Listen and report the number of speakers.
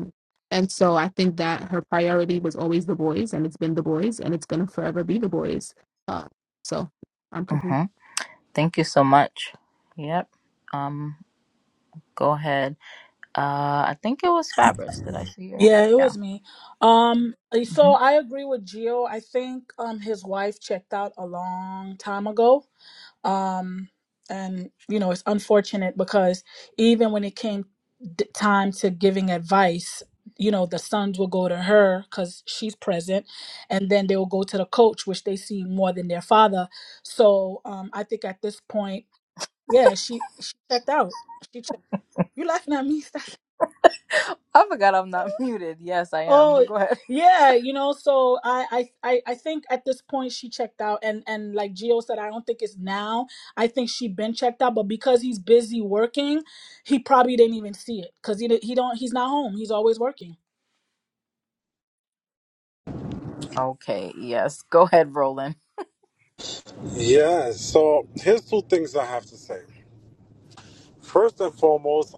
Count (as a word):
four